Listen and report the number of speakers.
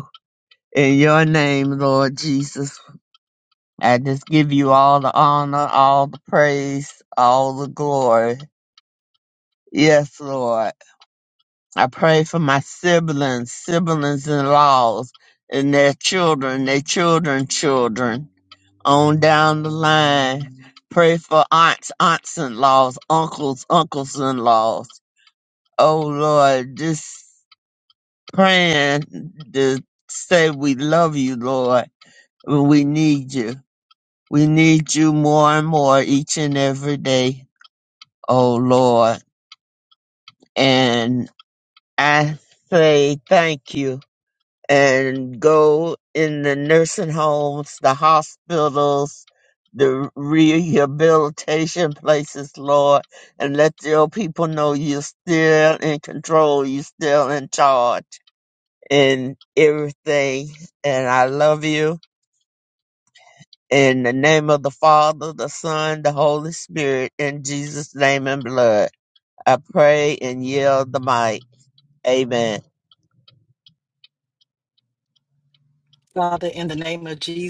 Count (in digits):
2